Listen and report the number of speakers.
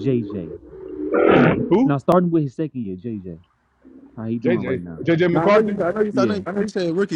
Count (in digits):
3